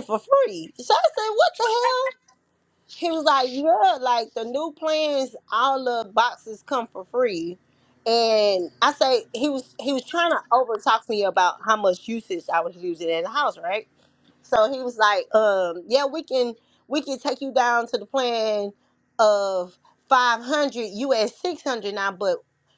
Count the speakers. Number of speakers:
one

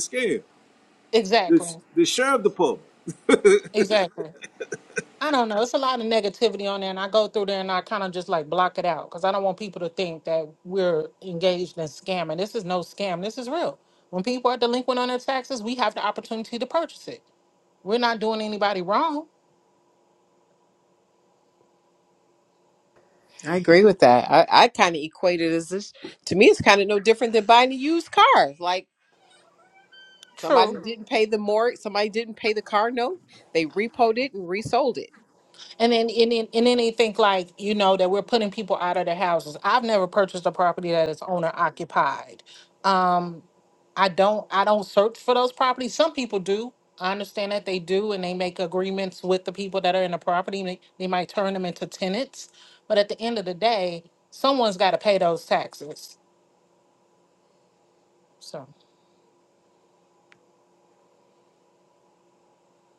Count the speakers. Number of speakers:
three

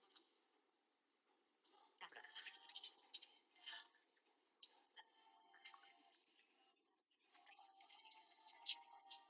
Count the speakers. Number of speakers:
zero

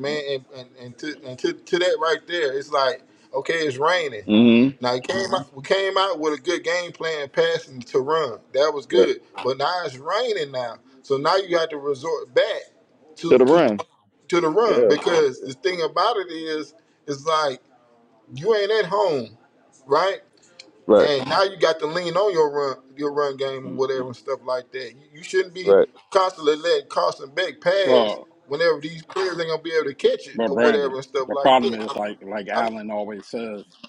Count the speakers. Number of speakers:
three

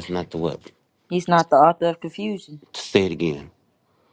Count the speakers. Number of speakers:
two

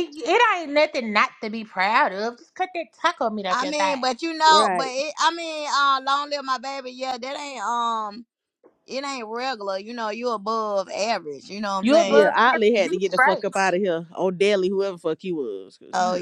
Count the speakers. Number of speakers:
three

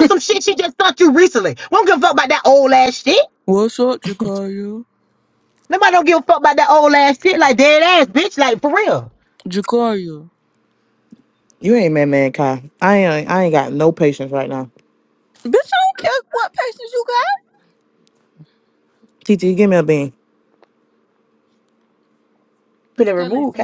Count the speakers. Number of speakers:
three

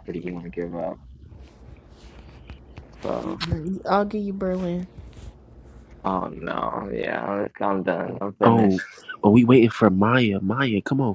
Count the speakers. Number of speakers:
three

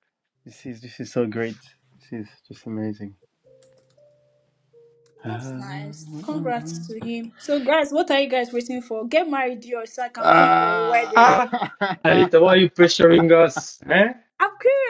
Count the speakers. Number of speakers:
three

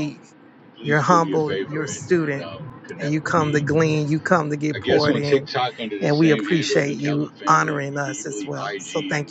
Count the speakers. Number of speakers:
two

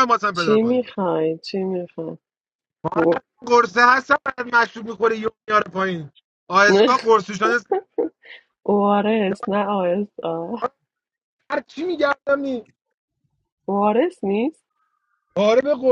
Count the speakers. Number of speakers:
two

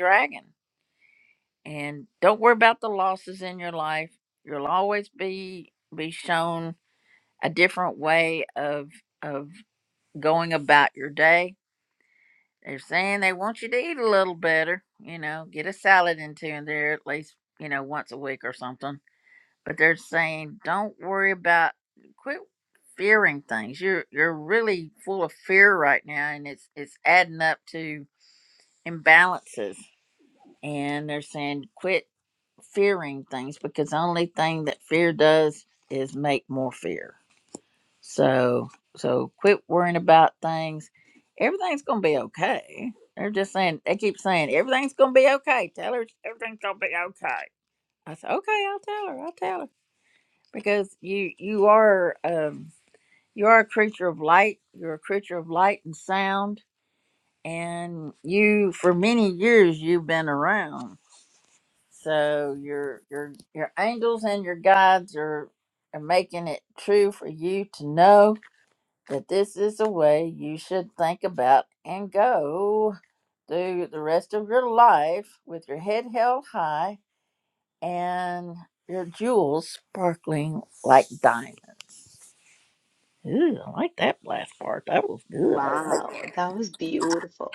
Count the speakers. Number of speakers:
two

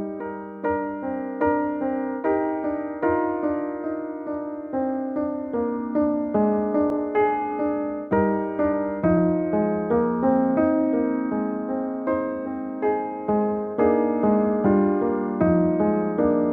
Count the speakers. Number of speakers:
zero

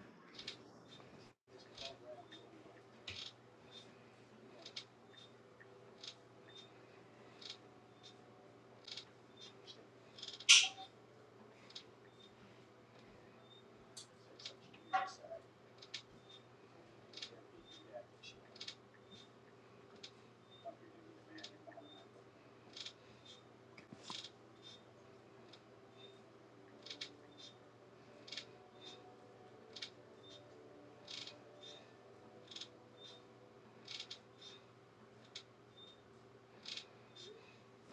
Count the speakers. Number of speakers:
zero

